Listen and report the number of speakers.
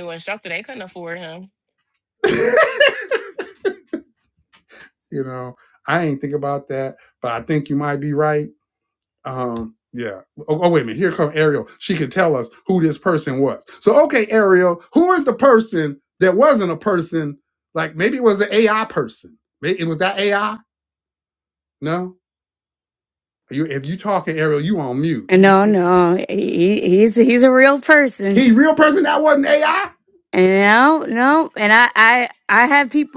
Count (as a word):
three